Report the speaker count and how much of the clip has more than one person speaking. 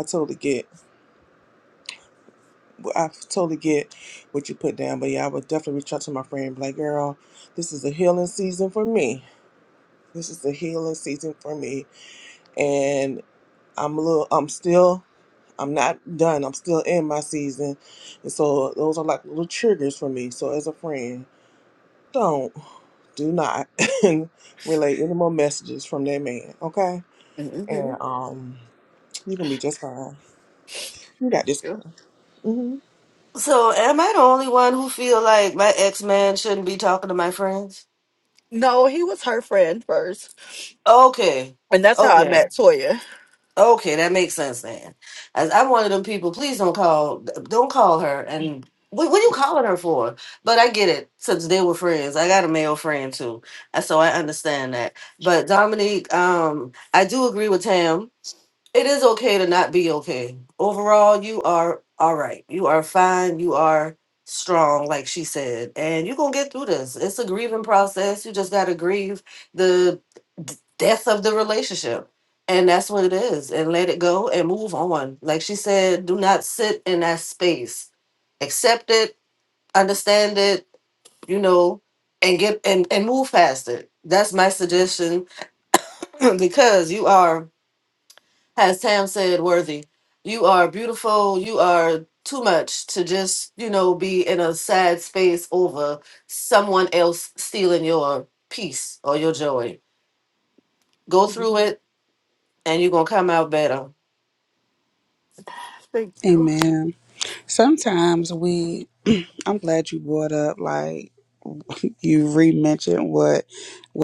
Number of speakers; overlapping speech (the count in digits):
4, about 1%